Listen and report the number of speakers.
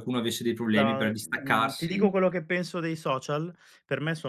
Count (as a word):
two